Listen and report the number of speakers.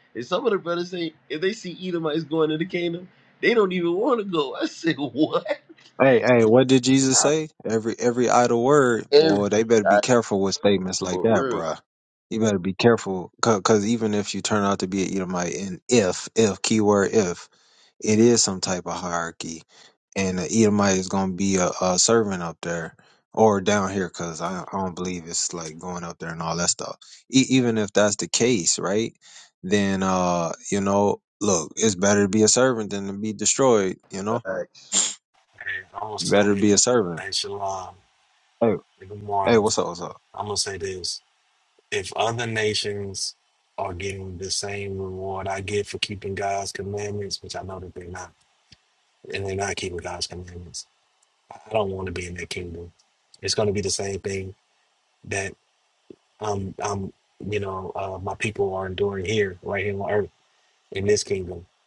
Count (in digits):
3